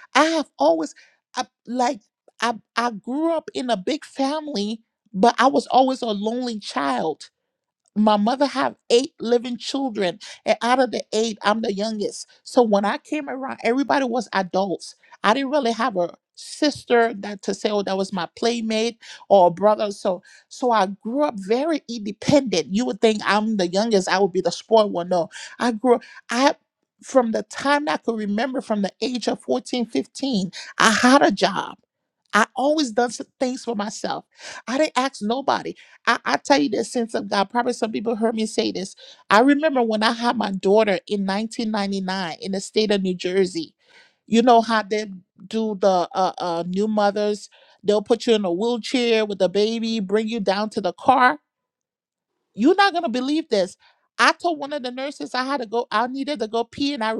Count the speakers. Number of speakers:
one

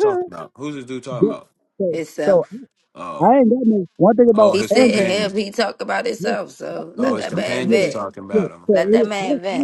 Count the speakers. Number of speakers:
three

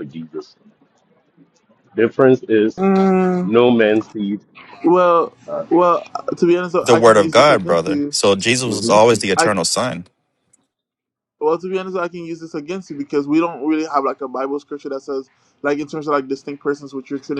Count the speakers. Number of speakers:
three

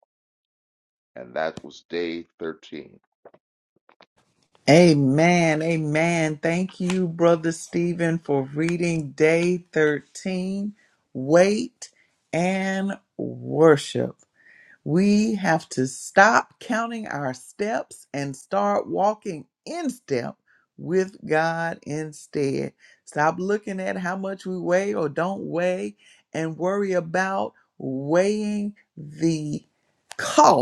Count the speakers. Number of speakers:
two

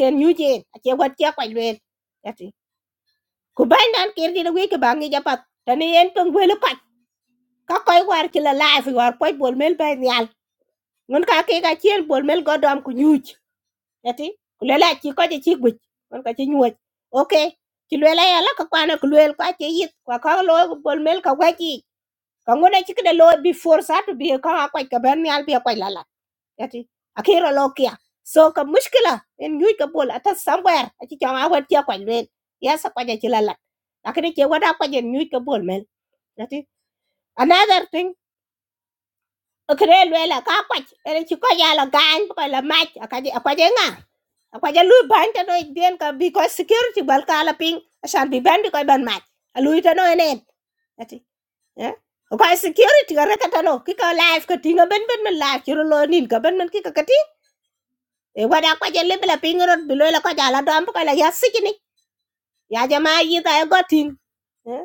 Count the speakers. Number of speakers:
one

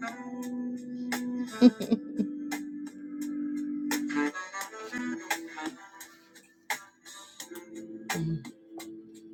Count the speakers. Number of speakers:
zero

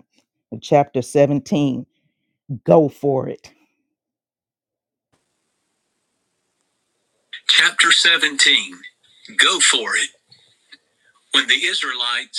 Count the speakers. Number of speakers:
two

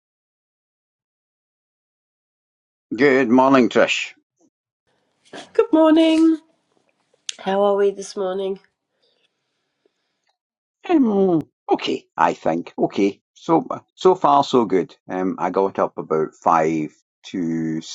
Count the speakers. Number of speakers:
two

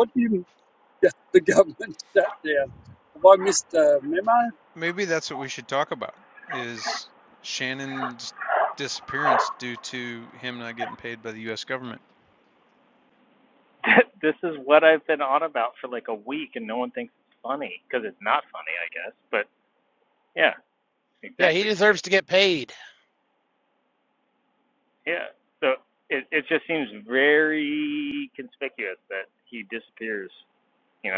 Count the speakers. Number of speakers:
four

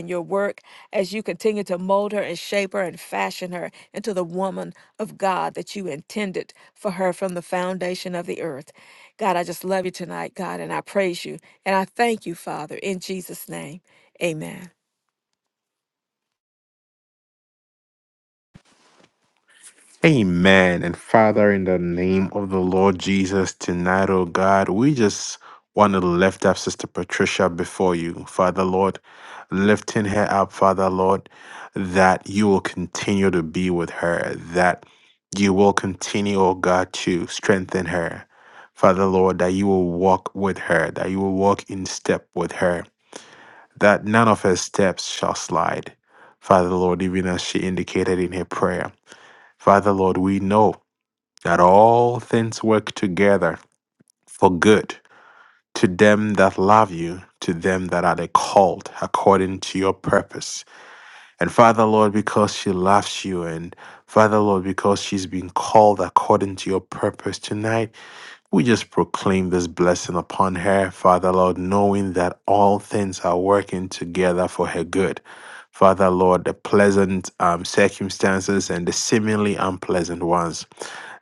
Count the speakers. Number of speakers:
two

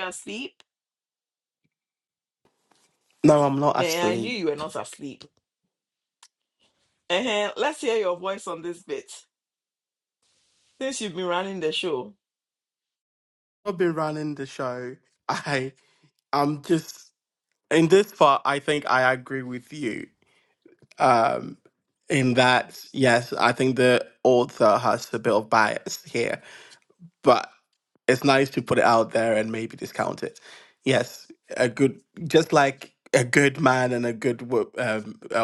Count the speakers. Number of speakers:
two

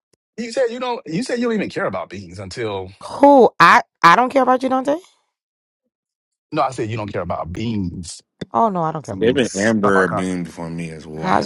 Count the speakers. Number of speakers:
three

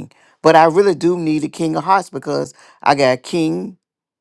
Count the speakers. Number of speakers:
one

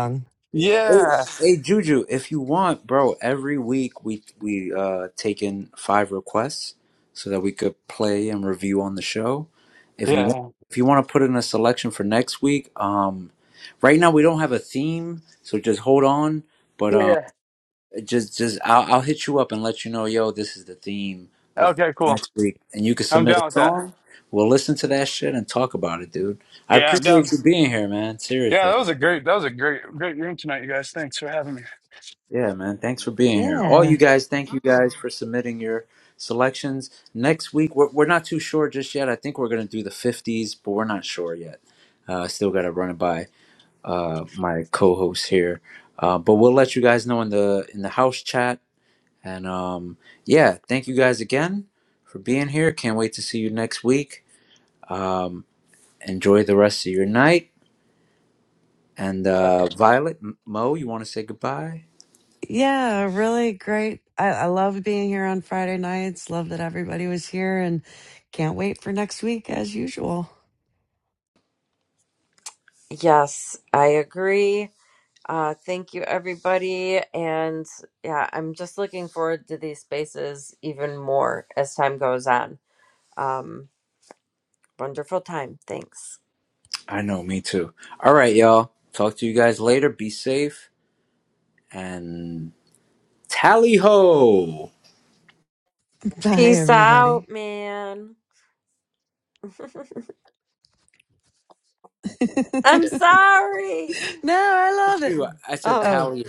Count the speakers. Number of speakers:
four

